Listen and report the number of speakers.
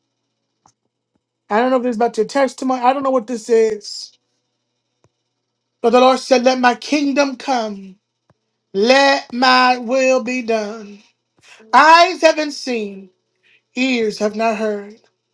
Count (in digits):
1